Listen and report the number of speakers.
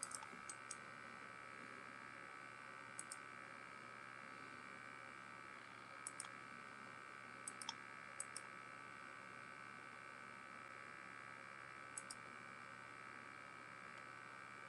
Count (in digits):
0